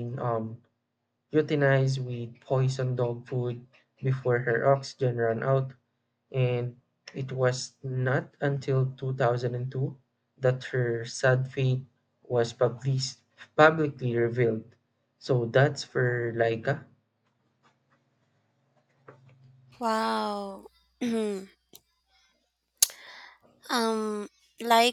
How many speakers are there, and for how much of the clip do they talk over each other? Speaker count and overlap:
2, no overlap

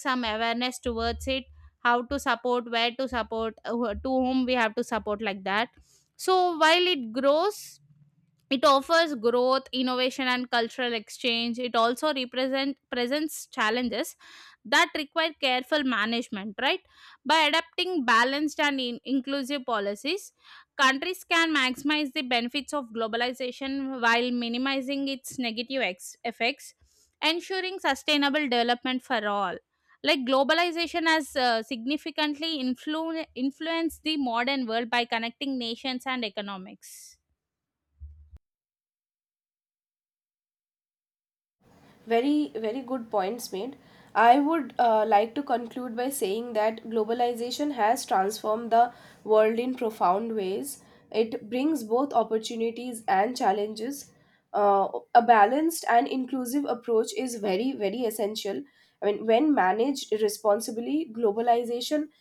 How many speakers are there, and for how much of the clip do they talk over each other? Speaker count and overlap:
2, no overlap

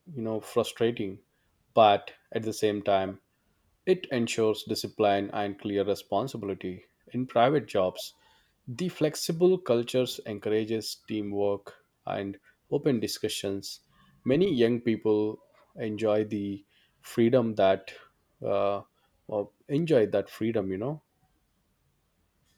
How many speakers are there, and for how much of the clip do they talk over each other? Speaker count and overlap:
1, no overlap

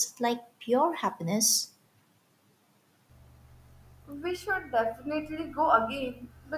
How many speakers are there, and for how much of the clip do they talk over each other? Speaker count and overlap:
2, no overlap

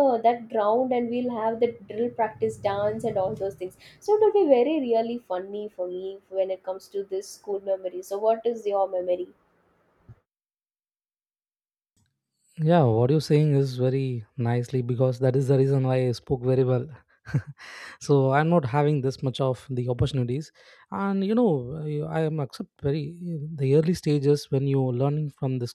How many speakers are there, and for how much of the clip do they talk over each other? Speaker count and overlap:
2, no overlap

